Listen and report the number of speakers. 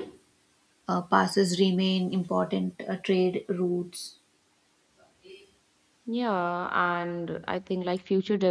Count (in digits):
2